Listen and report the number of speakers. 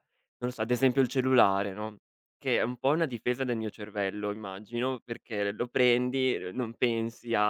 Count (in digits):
1